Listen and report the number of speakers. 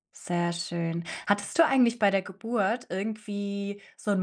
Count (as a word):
one